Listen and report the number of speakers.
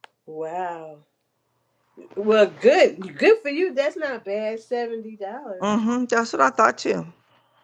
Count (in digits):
2